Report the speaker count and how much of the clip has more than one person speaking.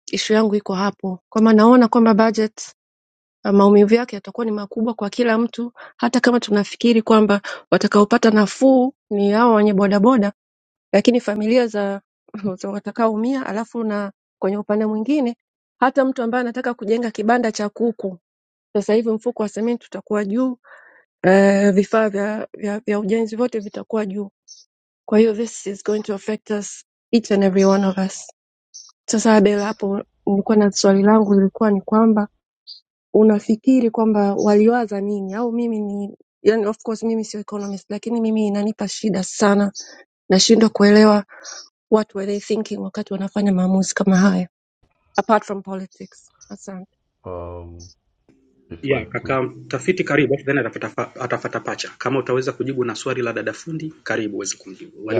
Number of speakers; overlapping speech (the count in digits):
3, about 1%